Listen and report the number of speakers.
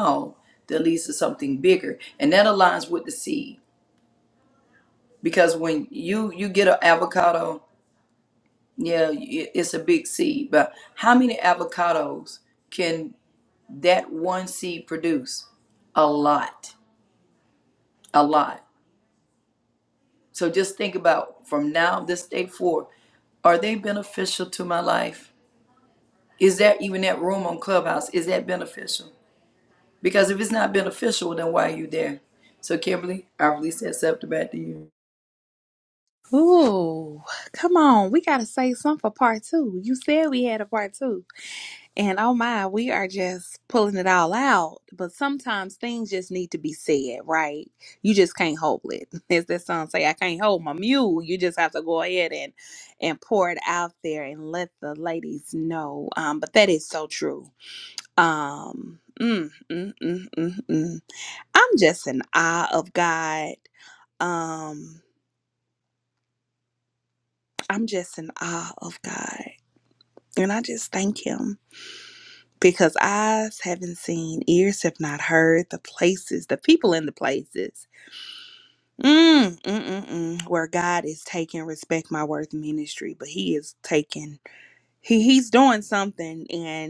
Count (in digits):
2